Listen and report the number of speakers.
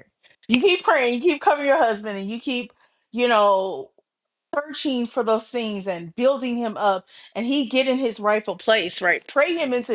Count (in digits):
1